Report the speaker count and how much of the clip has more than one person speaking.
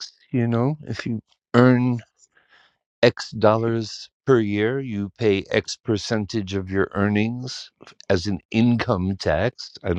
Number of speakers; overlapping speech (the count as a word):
one, no overlap